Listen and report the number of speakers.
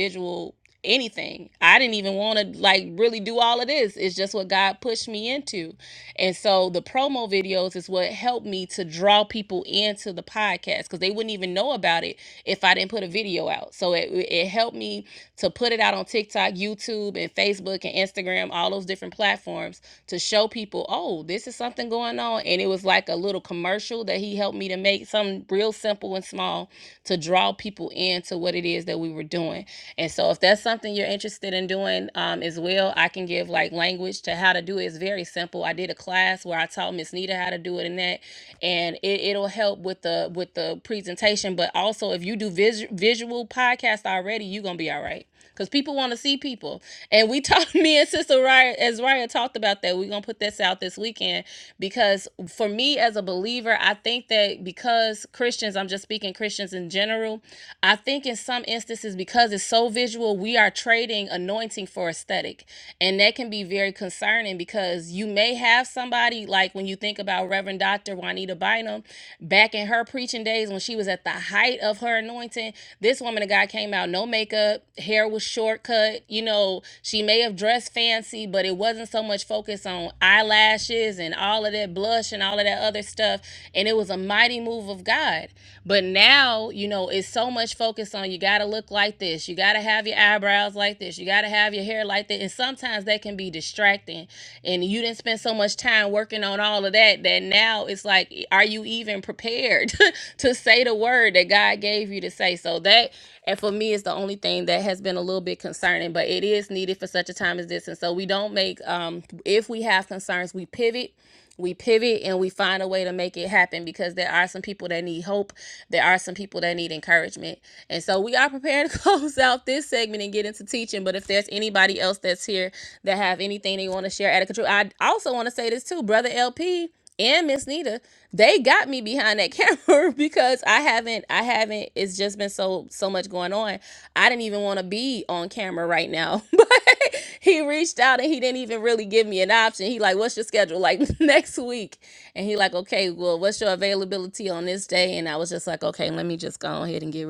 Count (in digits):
1